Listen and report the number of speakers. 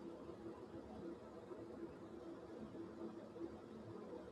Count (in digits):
0